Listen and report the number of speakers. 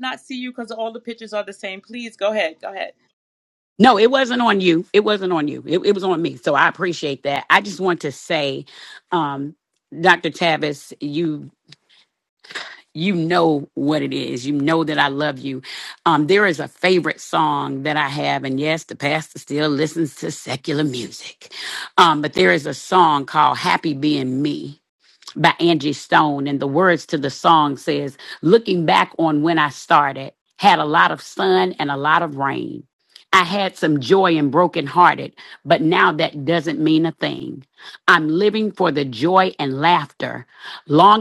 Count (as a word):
two